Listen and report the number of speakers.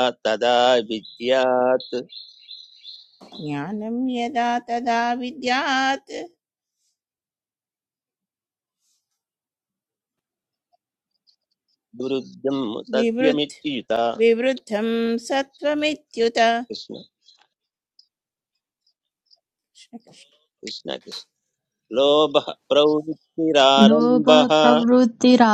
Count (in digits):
3